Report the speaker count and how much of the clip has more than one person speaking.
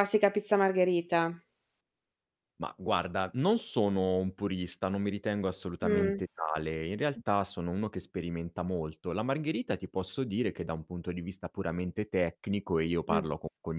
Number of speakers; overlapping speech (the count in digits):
2, about 4%